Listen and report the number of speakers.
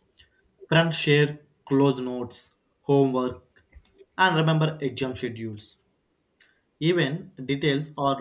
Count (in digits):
1